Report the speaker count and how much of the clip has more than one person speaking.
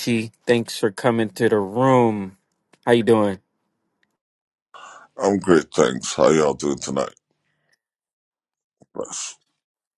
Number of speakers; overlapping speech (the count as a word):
two, no overlap